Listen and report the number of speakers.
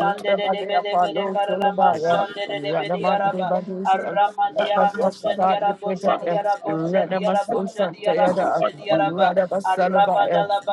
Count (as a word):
two